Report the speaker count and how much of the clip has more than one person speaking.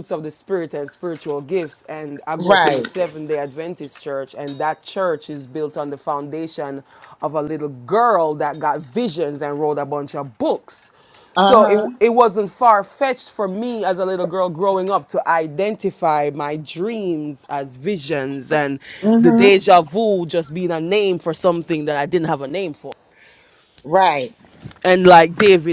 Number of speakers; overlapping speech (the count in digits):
2, about 5%